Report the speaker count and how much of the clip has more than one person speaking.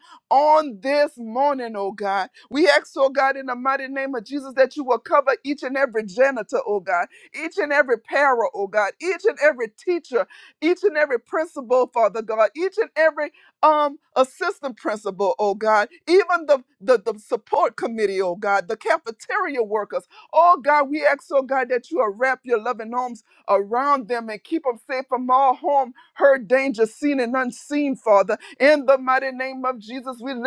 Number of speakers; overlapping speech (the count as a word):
one, no overlap